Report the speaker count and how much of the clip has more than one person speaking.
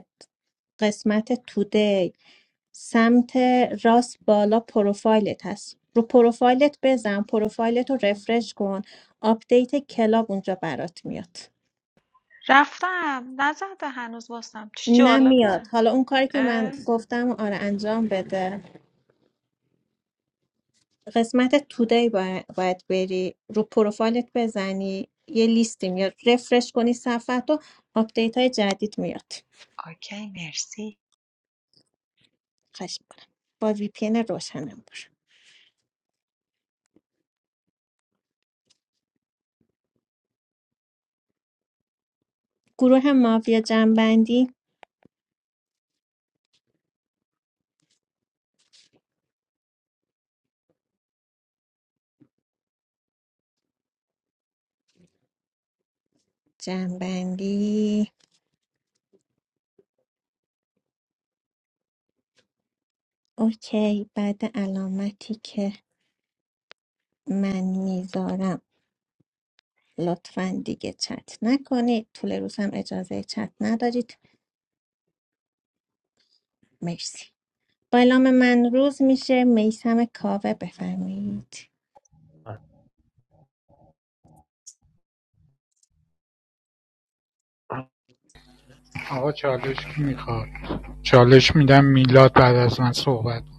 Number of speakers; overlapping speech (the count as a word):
three, about 1%